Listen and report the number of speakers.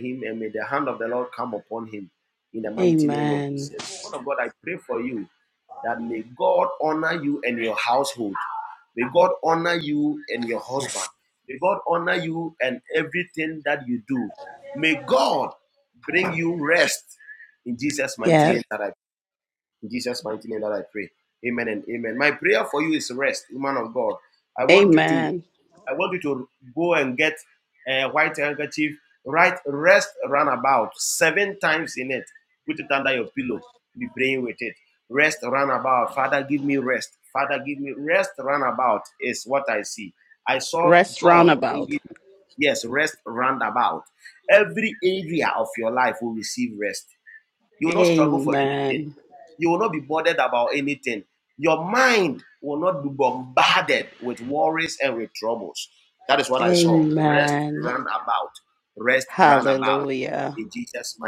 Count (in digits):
2